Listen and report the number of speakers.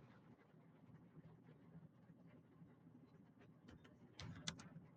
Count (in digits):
0